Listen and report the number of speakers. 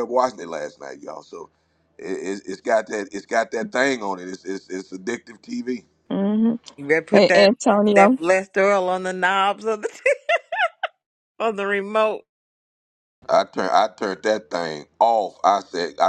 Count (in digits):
3